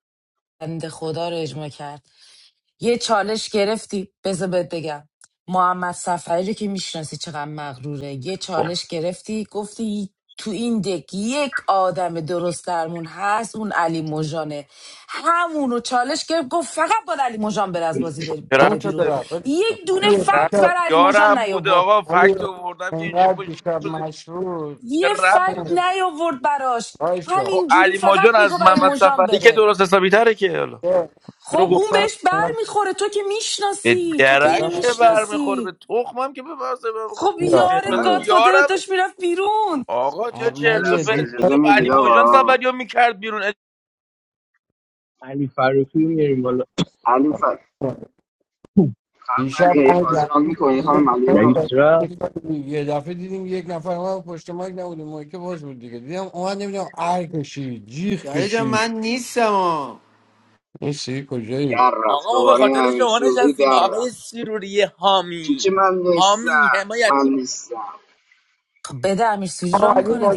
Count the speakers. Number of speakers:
6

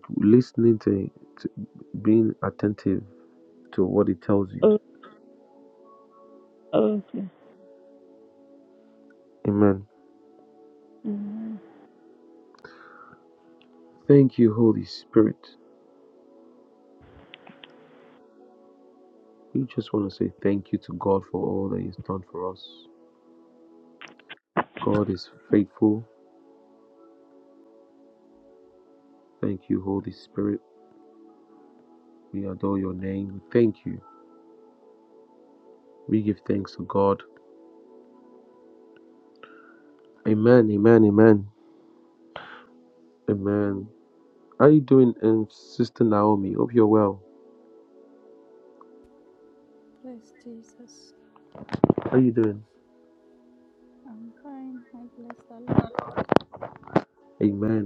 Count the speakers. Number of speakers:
3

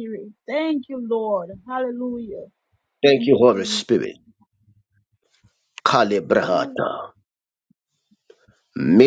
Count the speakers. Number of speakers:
2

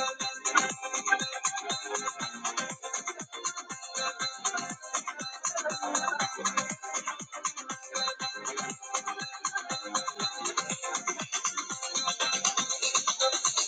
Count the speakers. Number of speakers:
0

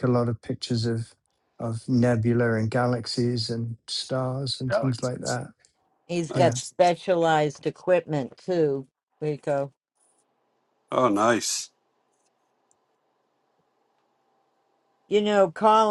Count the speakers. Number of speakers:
3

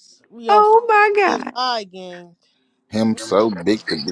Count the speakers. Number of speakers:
3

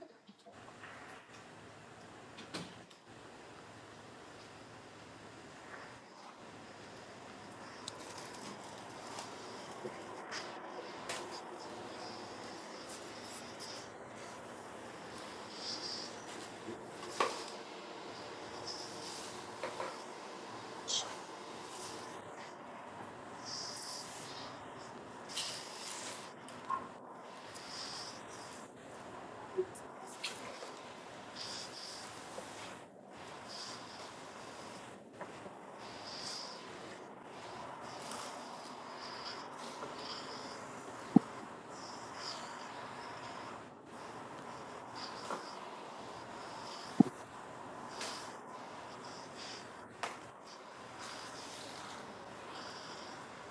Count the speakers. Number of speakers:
0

